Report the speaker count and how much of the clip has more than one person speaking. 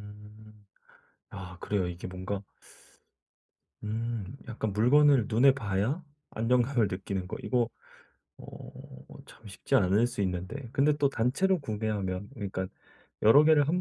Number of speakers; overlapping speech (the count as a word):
one, no overlap